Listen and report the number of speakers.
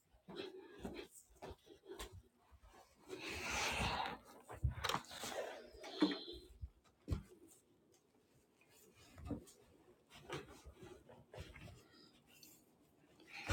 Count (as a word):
zero